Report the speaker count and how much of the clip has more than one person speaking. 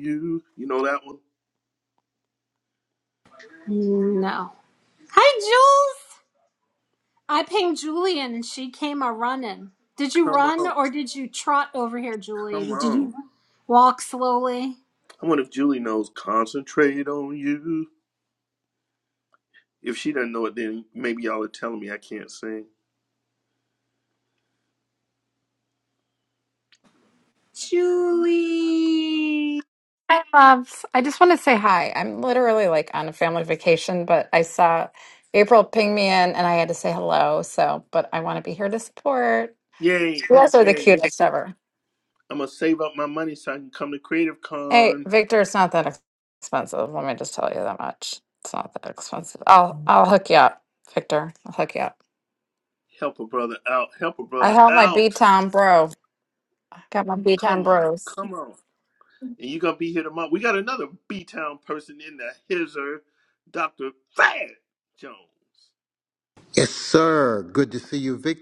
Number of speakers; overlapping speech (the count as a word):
four, about 5%